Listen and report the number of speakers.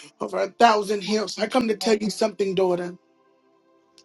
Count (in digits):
1